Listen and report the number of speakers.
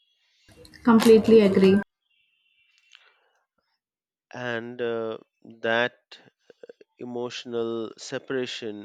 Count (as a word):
two